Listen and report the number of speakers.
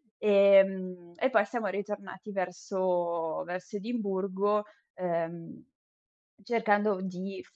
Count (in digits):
1